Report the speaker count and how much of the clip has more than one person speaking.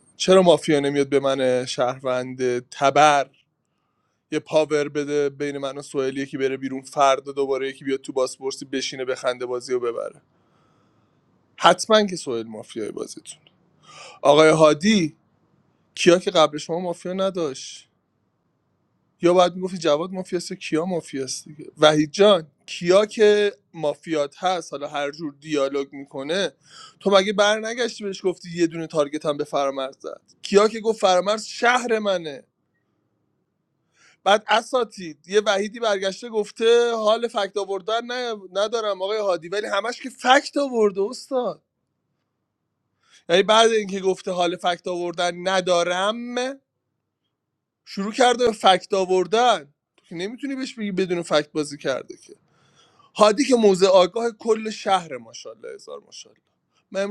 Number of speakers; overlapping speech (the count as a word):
one, no overlap